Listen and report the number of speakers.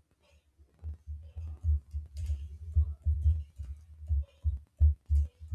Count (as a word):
zero